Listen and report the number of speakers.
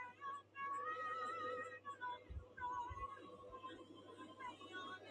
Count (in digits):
0